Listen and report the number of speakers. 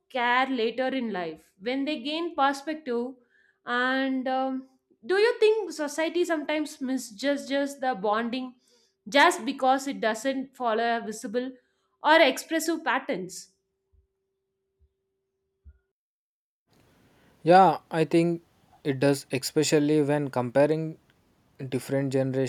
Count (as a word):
two